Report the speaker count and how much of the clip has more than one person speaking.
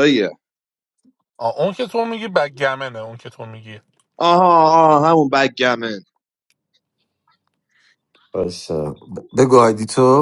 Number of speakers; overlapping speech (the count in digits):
3, no overlap